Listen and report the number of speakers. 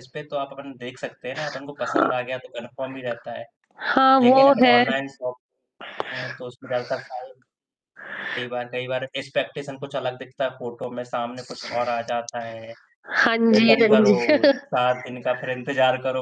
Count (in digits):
2